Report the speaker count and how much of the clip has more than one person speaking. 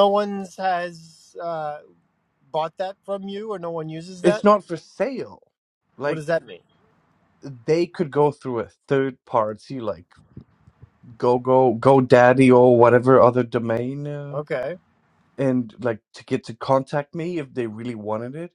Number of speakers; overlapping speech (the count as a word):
two, about 2%